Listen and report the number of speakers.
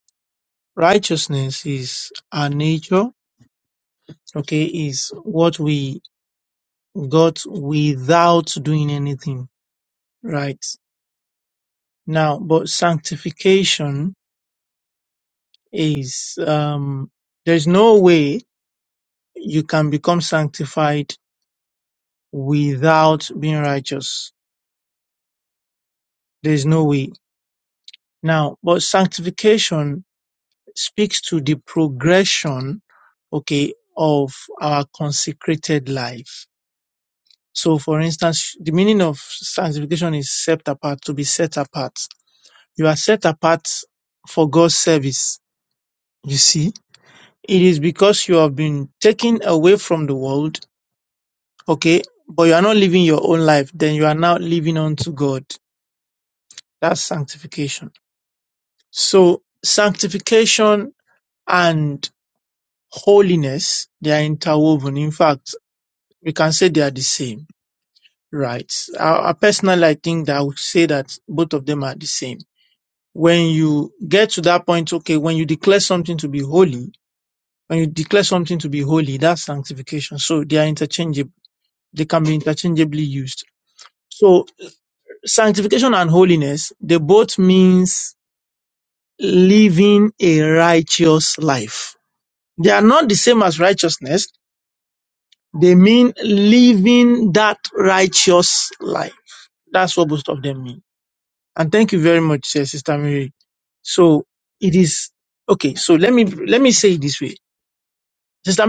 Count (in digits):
1